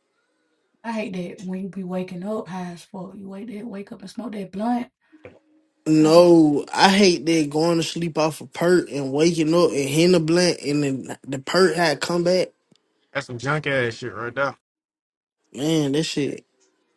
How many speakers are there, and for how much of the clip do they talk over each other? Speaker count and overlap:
three, about 1%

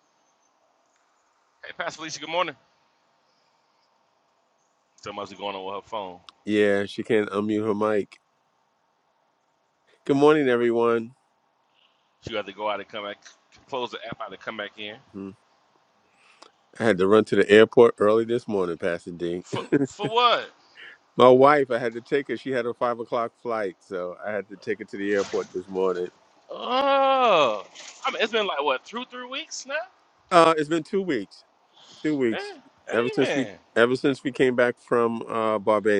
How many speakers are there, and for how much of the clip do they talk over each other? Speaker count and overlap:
two, about 1%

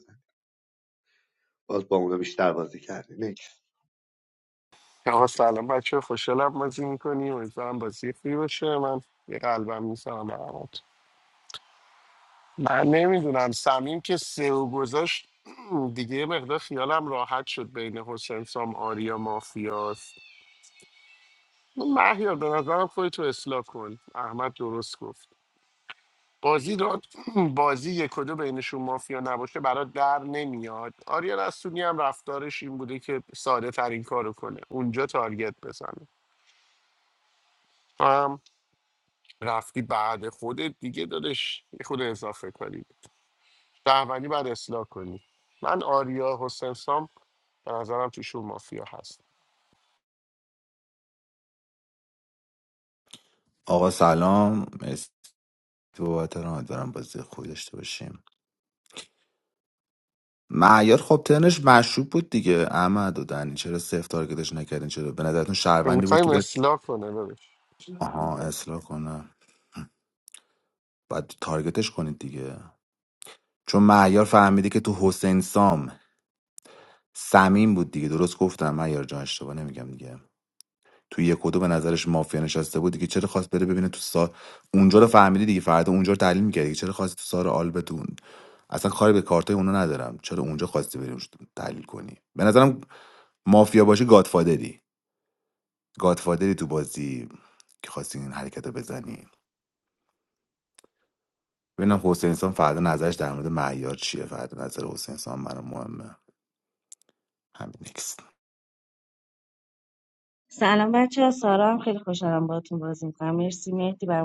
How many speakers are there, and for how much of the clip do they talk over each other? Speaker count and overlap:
four, about 1%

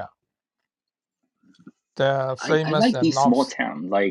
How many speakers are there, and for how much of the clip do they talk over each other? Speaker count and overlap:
two, about 25%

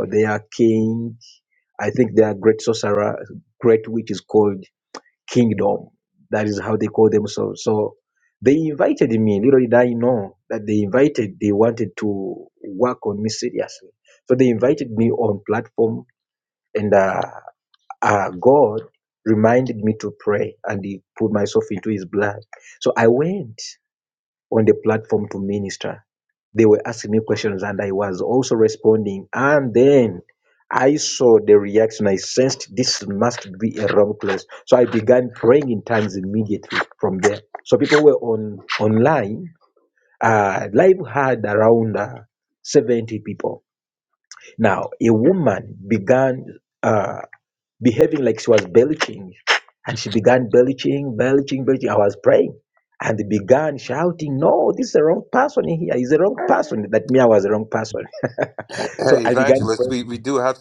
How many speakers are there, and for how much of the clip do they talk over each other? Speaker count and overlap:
two, about 2%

